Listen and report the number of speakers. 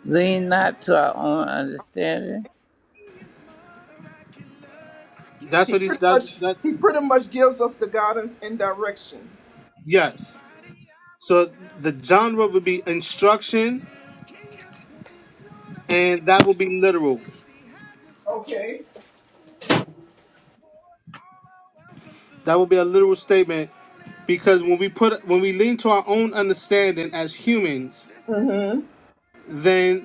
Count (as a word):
three